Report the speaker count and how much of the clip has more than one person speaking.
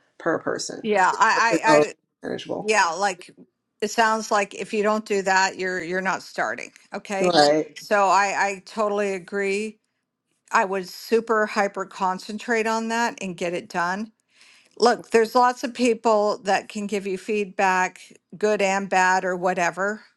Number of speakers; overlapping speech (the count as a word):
two, about 3%